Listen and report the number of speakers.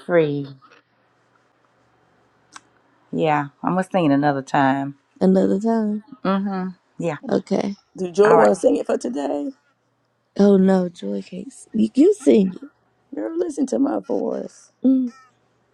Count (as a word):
three